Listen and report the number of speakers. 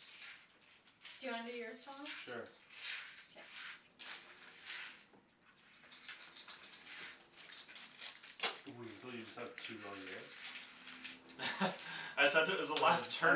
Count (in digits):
3